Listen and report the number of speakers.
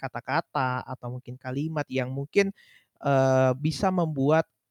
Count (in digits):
1